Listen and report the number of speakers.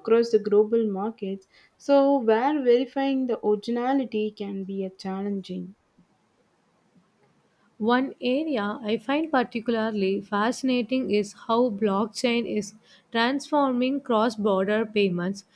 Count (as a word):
two